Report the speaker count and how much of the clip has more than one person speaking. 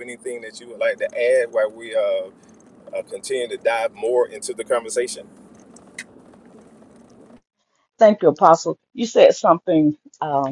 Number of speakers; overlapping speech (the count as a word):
two, no overlap